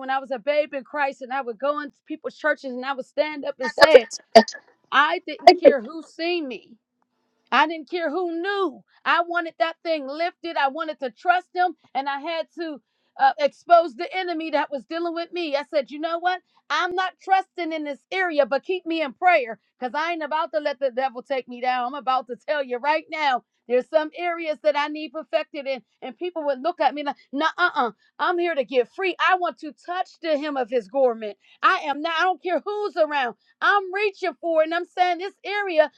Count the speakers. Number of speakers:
1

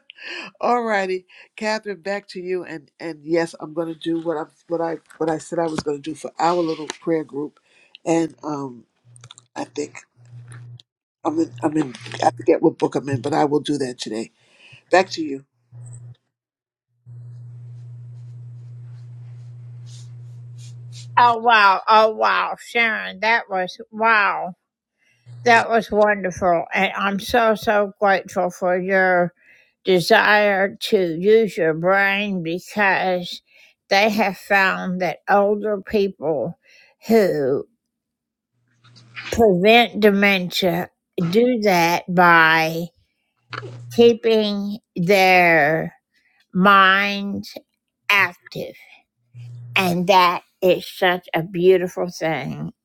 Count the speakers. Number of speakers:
2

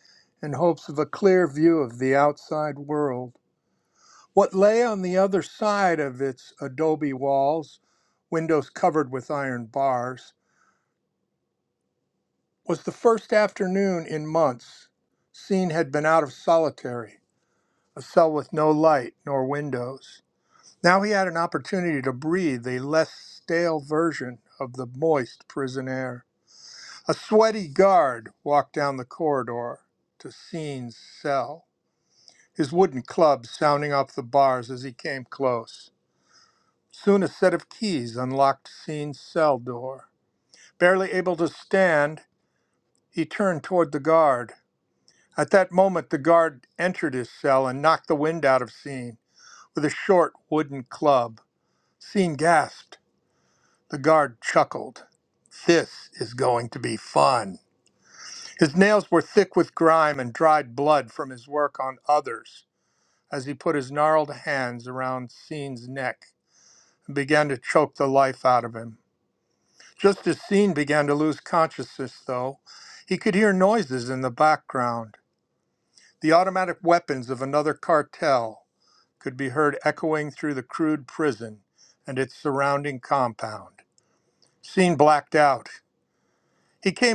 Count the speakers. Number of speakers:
1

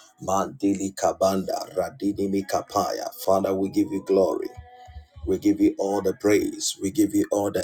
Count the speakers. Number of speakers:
1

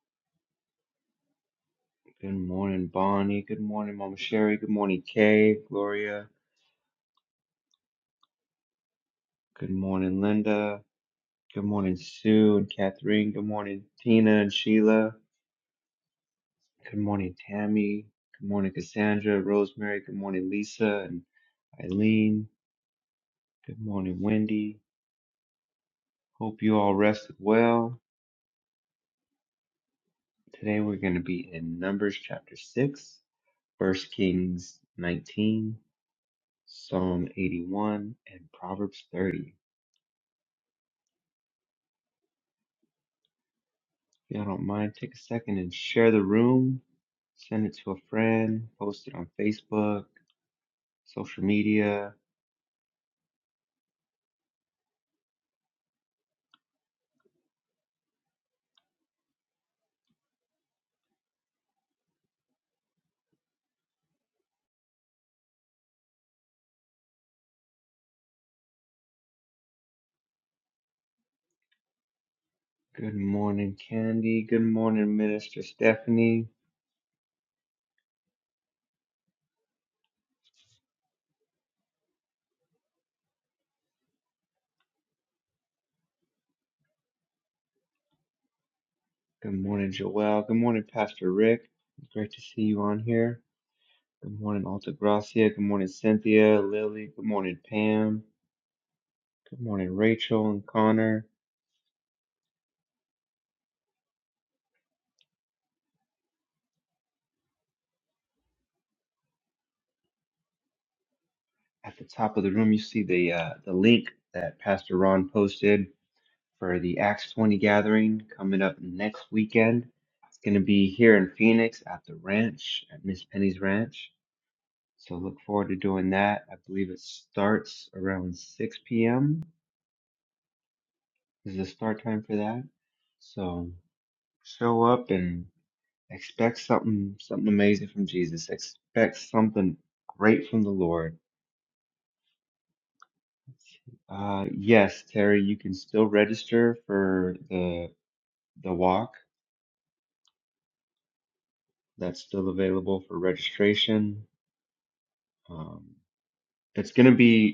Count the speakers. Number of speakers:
1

